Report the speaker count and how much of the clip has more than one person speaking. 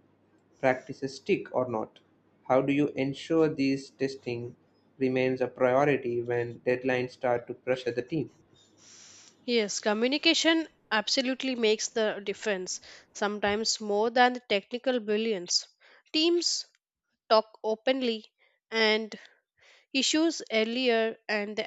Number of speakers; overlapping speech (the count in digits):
2, no overlap